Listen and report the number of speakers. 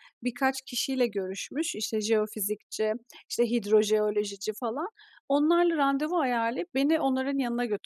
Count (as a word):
one